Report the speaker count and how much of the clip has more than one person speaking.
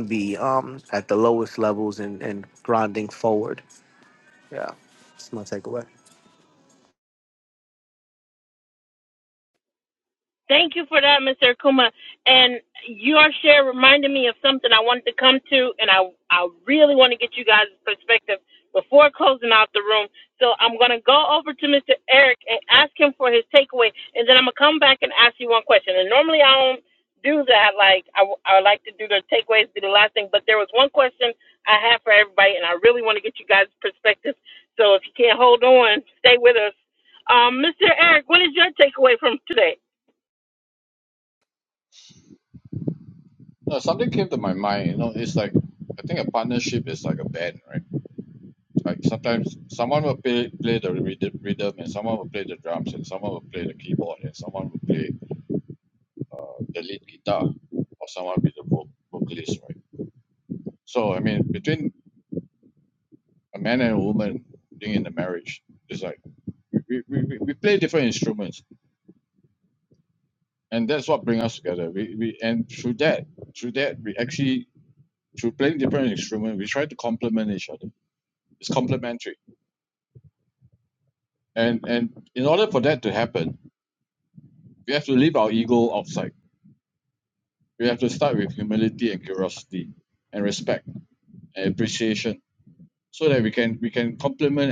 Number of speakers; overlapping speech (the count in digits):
3, no overlap